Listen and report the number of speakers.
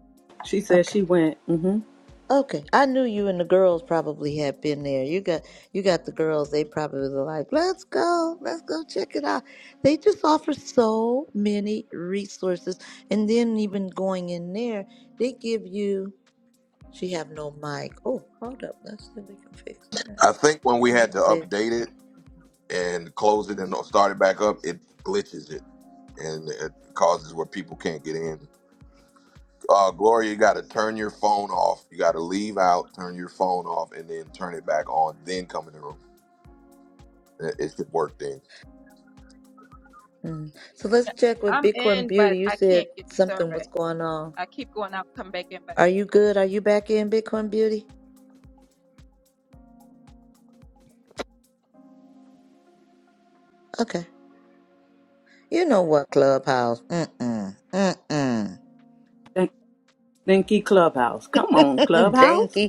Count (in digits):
4